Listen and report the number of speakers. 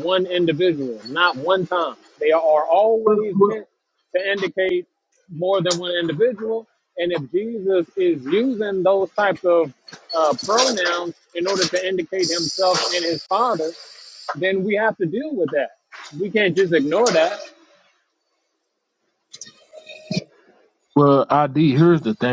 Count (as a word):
two